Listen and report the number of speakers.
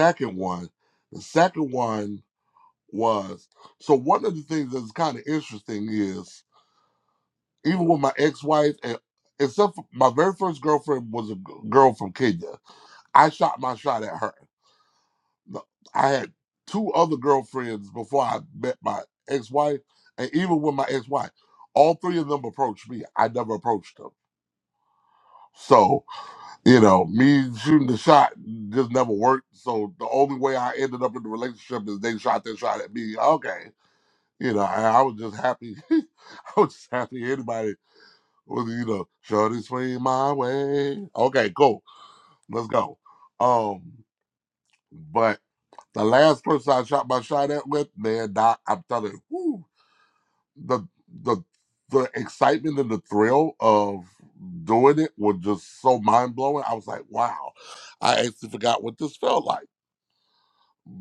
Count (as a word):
one